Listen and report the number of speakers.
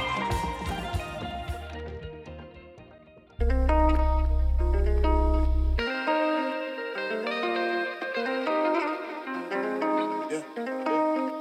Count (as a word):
zero